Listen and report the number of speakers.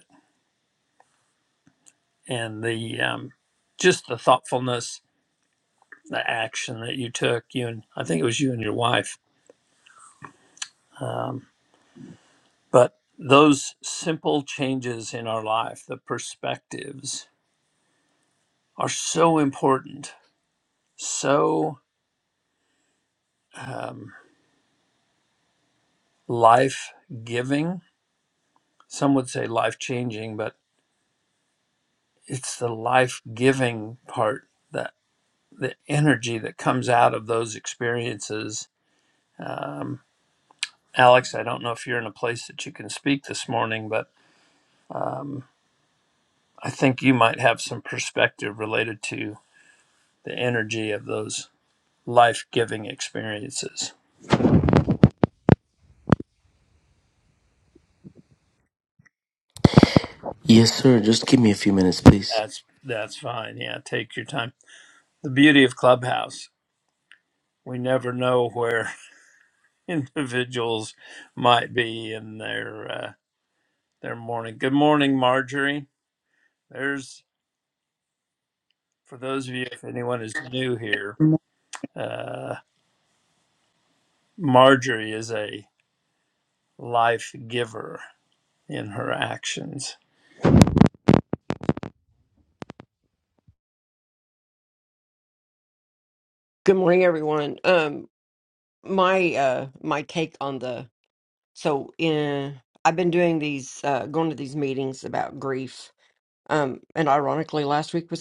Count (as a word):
three